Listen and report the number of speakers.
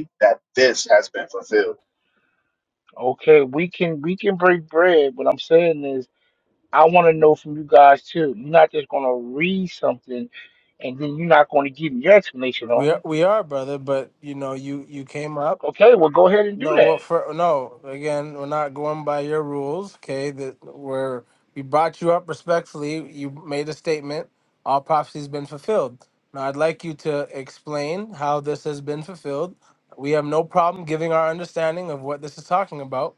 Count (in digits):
3